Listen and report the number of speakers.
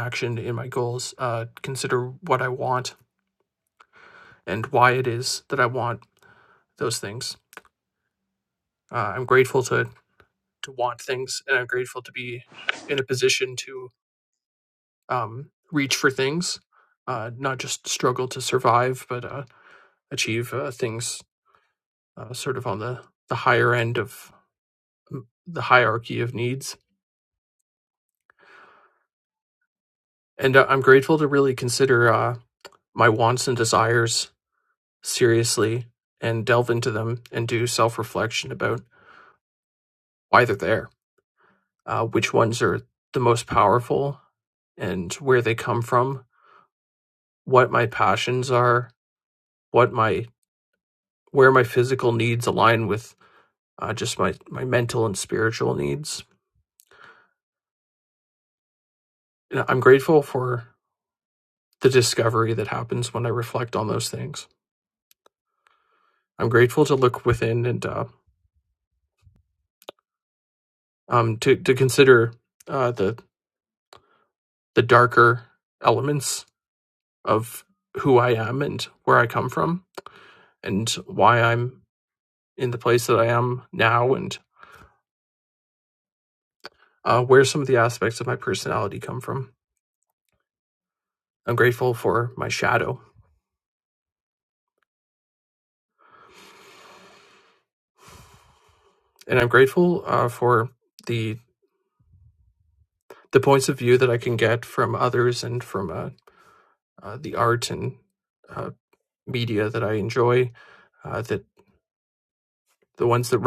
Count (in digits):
1